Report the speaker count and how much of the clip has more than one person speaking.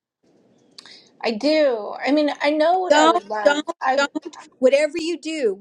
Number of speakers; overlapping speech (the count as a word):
two, about 21%